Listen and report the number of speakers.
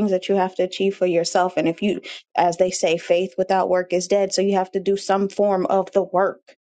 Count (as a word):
one